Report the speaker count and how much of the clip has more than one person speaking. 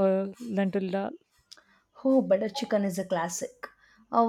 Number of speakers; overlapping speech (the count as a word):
two, no overlap